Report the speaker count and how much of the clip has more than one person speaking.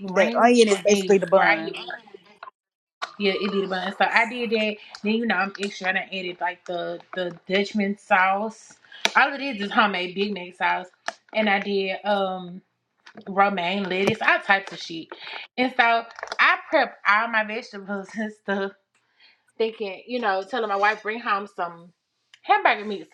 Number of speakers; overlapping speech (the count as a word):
two, about 5%